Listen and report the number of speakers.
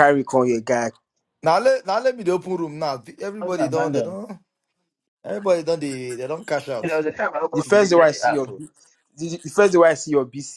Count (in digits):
3